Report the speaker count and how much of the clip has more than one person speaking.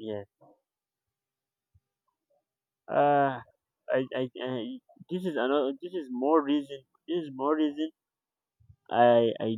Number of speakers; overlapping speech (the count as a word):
one, no overlap